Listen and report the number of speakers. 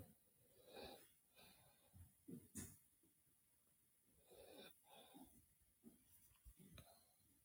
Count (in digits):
0